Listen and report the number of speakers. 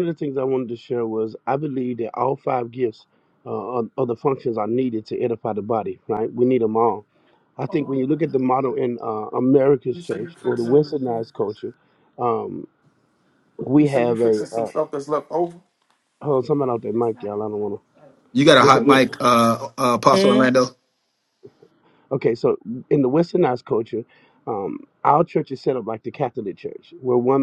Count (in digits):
3